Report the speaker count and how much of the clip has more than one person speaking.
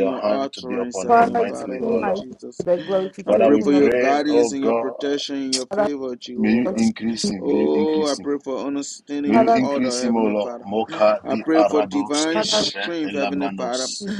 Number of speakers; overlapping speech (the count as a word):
three, about 70%